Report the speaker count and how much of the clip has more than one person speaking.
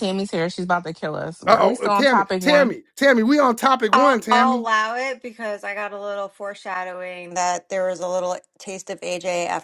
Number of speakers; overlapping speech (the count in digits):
3, about 21%